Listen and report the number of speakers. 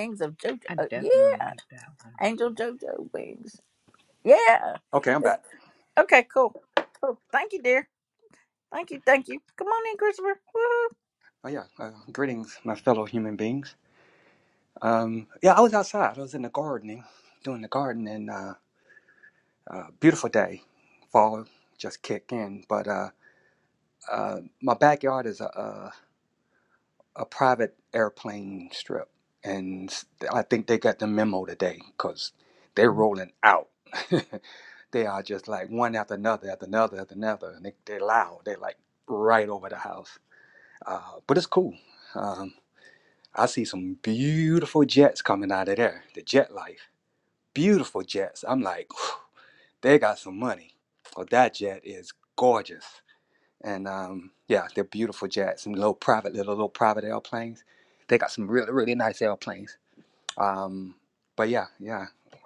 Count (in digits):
3